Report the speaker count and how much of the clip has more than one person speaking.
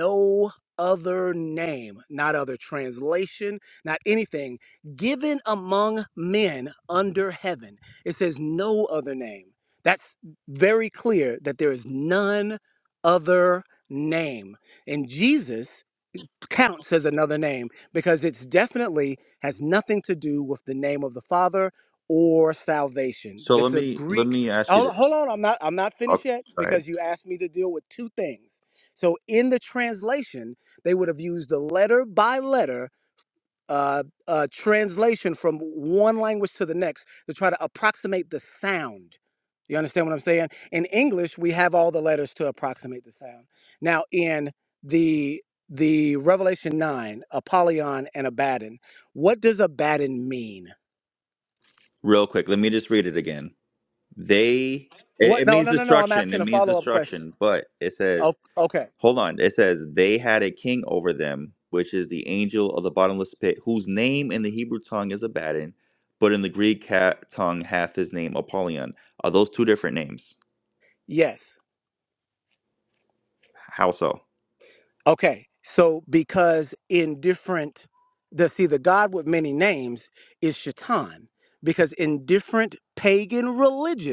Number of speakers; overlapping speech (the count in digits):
2, about 4%